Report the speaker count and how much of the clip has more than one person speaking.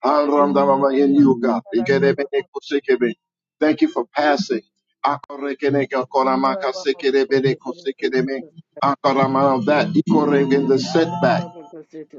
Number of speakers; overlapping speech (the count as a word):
two, about 34%